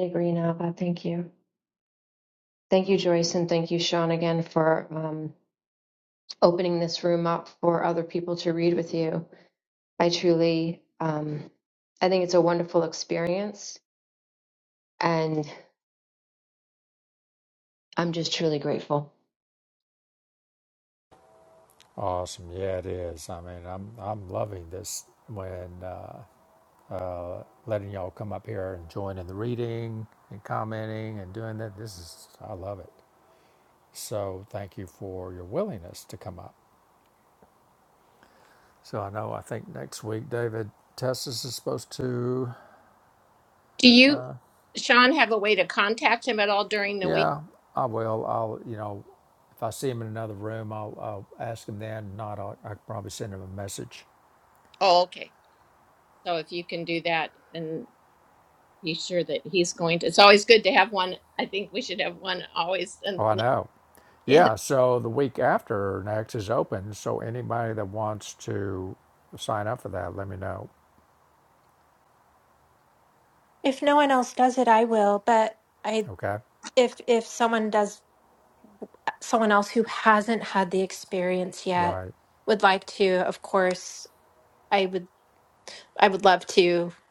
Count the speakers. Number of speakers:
four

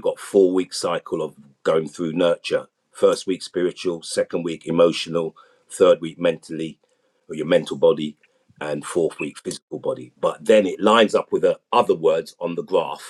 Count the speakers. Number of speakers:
one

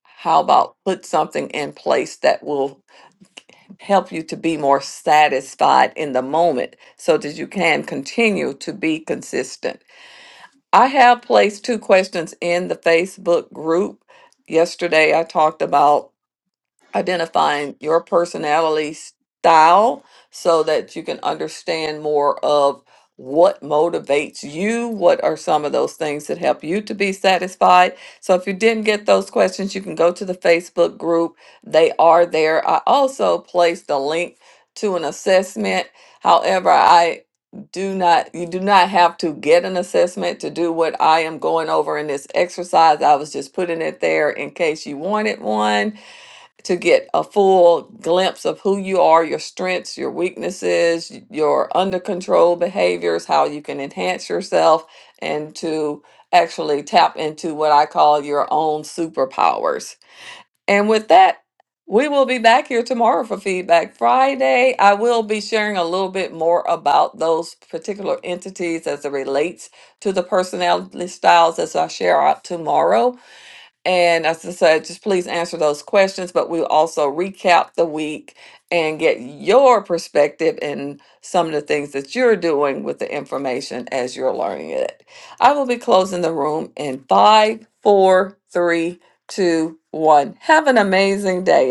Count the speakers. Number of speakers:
one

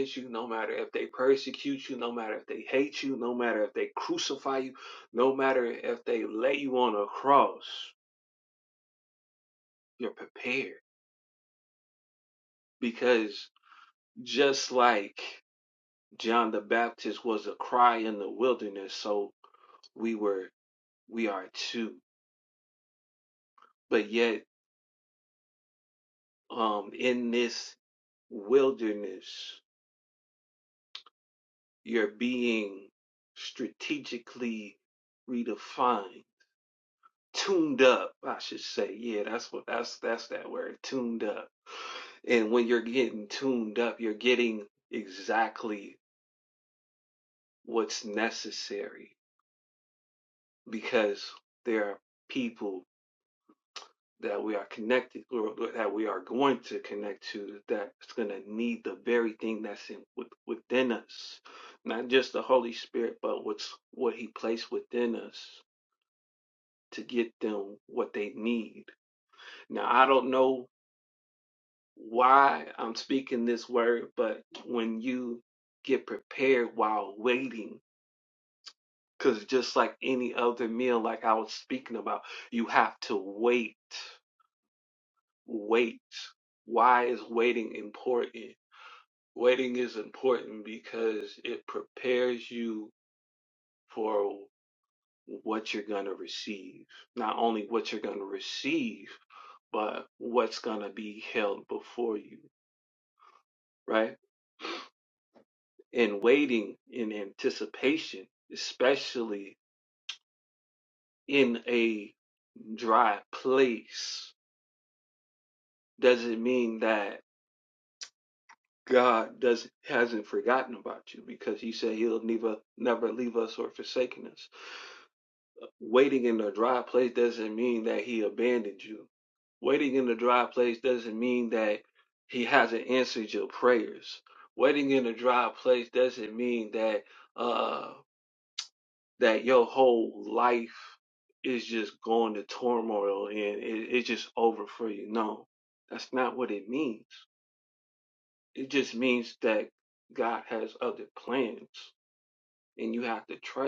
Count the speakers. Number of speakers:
one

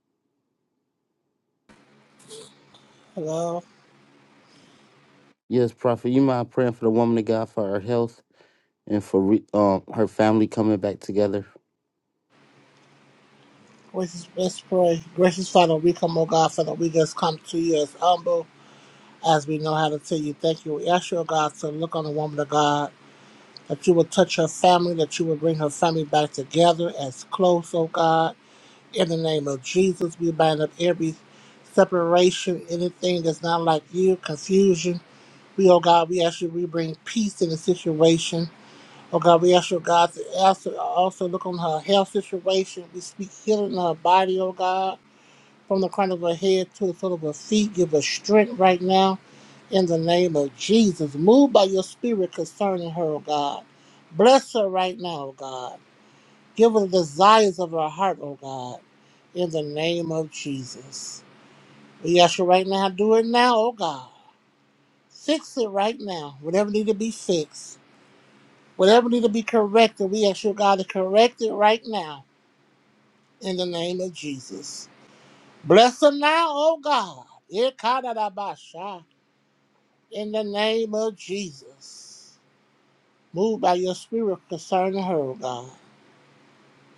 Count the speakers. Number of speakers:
two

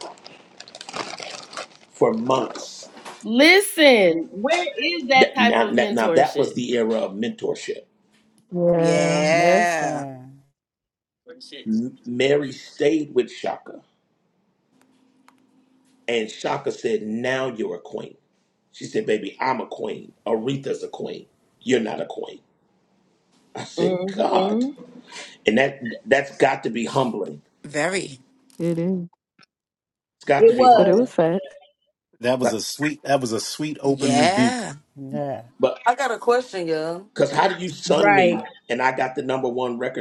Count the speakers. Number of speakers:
seven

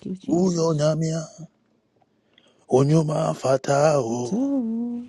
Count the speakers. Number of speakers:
two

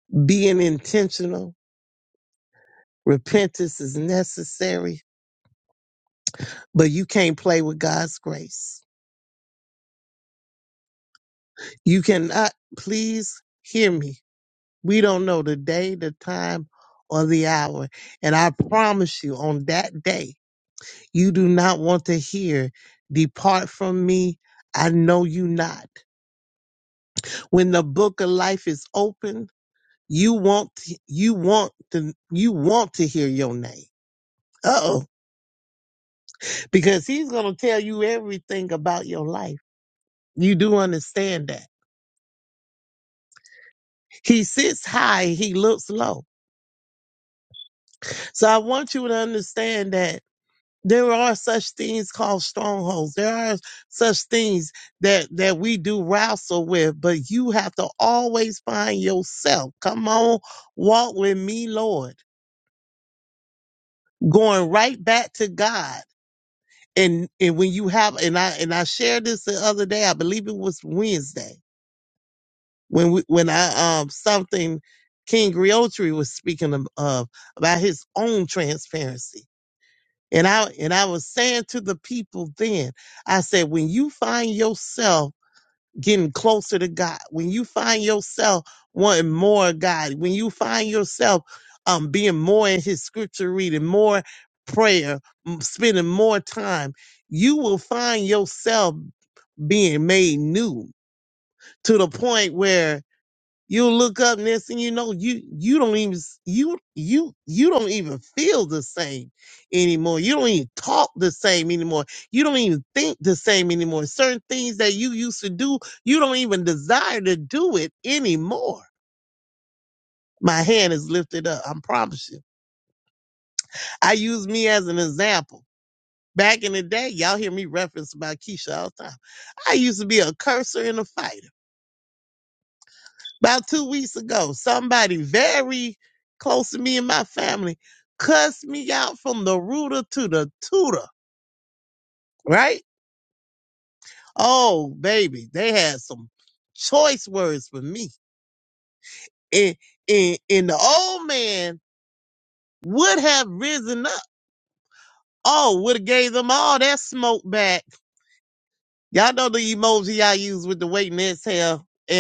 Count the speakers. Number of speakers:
one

